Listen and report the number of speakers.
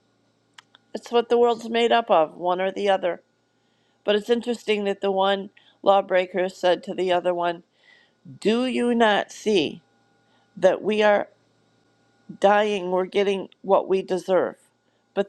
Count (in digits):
1